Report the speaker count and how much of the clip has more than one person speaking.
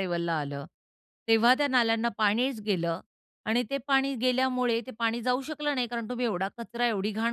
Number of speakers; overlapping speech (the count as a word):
one, no overlap